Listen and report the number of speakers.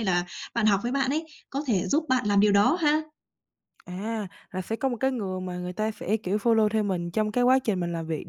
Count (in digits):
2